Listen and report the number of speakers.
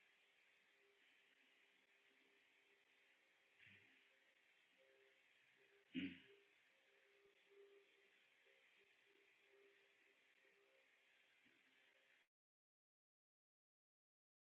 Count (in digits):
0